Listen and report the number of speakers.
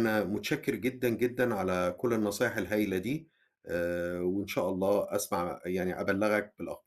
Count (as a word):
one